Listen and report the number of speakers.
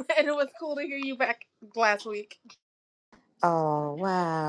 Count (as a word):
two